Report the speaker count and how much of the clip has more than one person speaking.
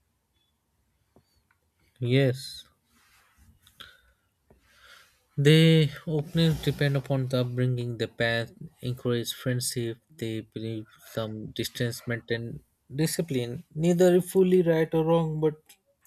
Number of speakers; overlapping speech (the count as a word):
one, no overlap